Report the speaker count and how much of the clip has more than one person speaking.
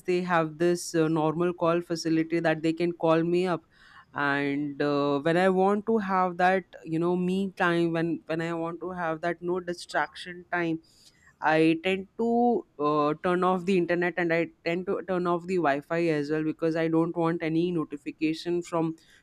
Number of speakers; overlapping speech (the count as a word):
one, no overlap